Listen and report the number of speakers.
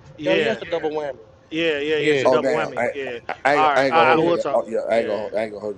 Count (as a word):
three